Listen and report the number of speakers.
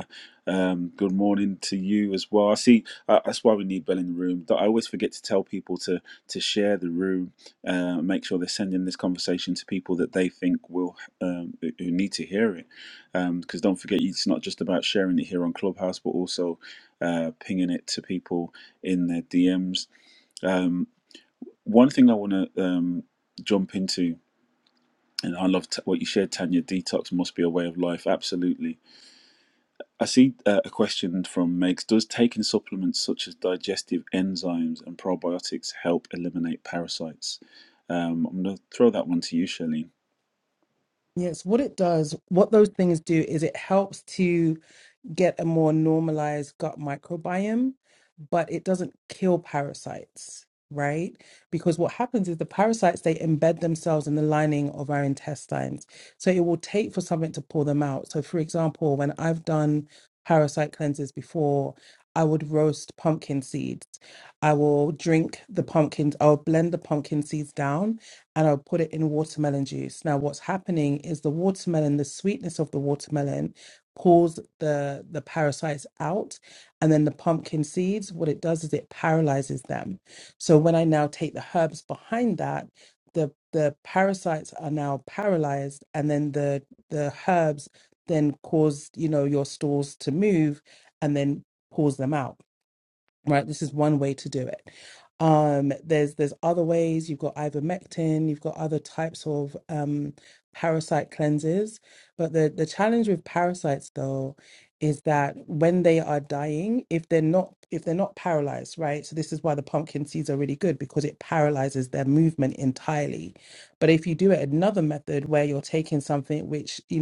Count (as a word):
two